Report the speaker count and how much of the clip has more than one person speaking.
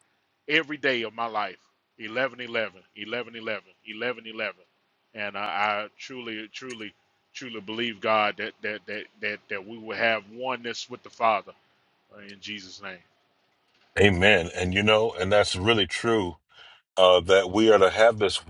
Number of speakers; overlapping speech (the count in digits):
2, no overlap